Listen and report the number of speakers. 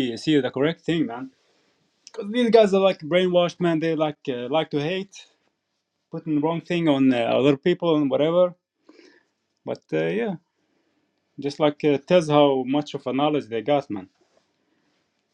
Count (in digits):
1